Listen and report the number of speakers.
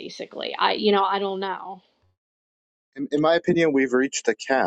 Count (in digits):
2